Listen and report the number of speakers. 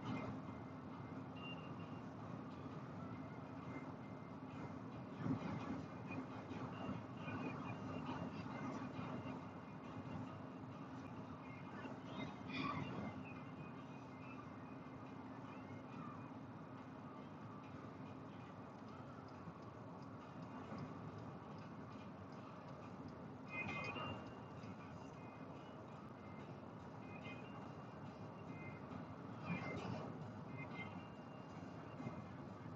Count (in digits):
0